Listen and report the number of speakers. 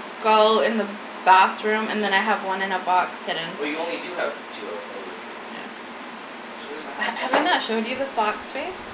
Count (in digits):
2